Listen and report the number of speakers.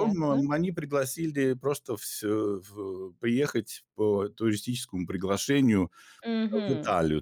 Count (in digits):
2